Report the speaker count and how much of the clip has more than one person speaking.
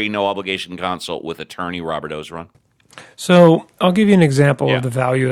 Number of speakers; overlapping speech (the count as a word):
two, about 3%